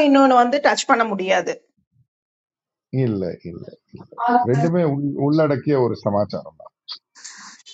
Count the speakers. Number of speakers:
two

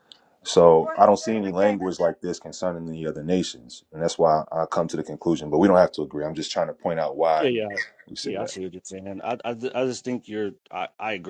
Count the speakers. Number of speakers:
two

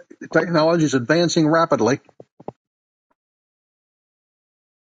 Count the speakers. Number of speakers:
one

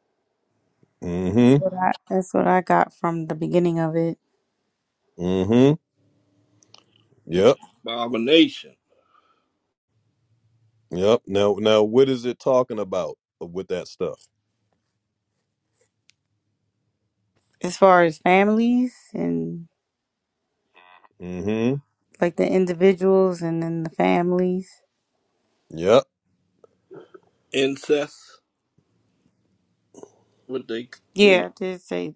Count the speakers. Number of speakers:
three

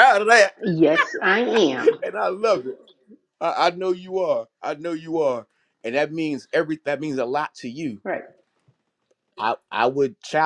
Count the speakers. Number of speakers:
two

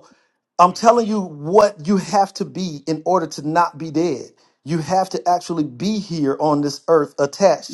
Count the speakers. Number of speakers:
one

